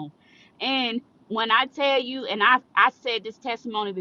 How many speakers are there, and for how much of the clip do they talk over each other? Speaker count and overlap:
one, no overlap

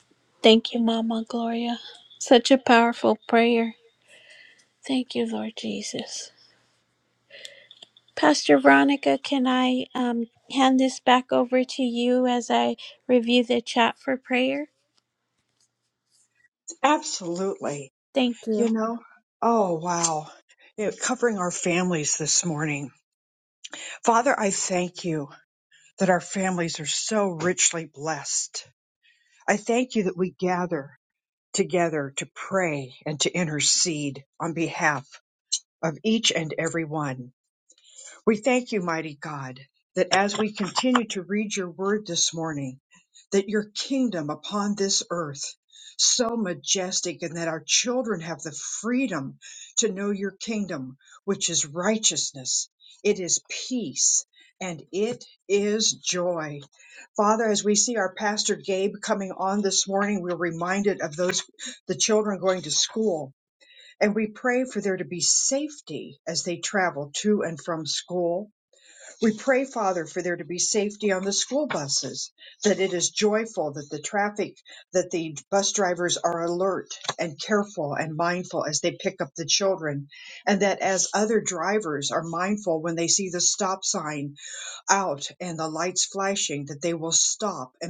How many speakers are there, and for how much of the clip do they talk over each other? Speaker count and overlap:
two, under 1%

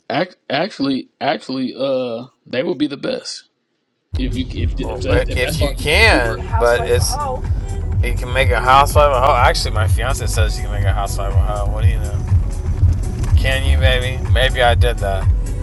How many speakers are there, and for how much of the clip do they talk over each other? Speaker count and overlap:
two, about 10%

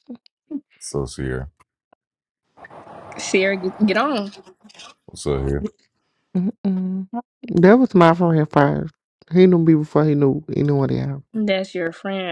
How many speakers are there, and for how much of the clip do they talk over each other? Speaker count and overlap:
three, no overlap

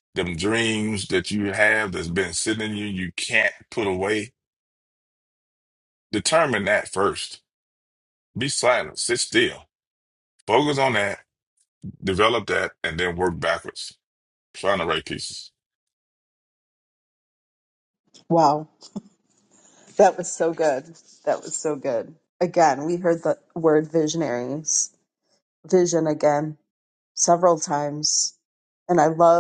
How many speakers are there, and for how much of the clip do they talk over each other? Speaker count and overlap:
two, no overlap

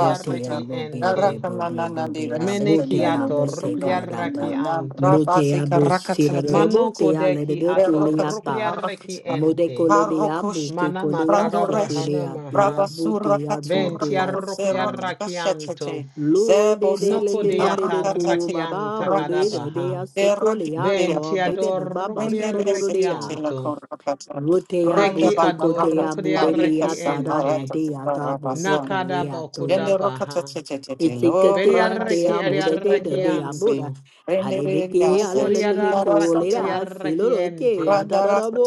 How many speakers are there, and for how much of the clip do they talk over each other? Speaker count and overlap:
three, about 90%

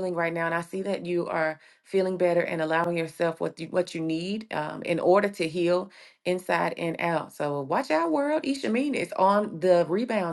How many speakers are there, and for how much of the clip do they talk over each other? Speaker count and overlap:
one, no overlap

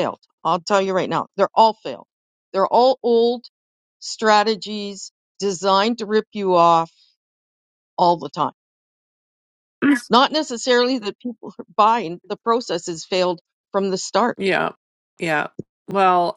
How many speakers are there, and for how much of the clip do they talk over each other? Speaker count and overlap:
two, no overlap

